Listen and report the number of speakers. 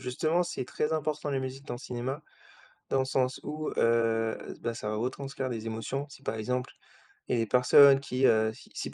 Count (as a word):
one